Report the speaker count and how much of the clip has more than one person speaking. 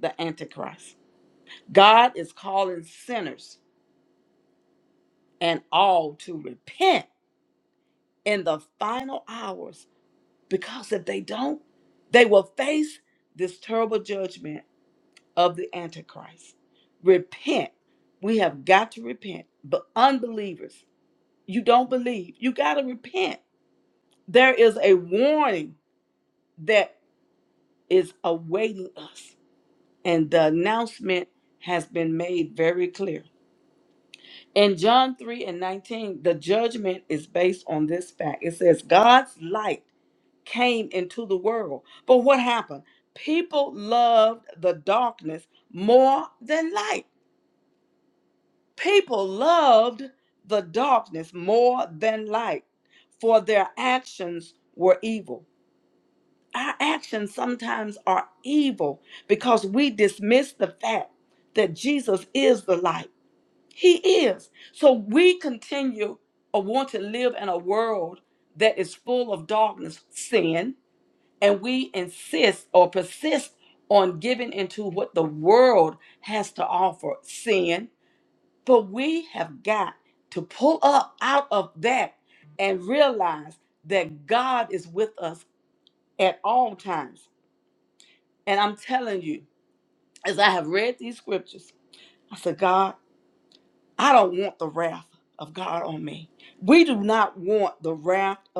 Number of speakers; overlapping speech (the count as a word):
one, no overlap